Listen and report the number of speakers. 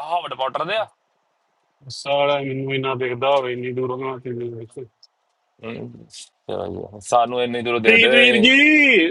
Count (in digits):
3